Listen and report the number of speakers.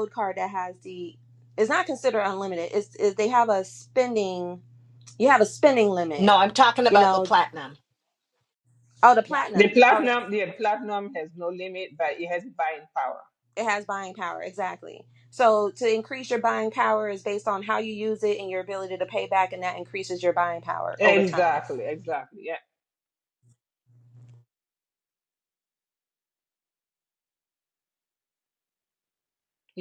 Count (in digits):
3